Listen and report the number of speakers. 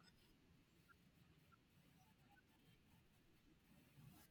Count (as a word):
zero